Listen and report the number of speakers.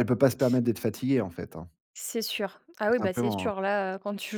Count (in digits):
2